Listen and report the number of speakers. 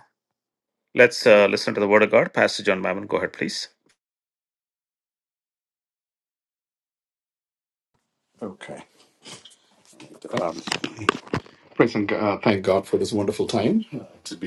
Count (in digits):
2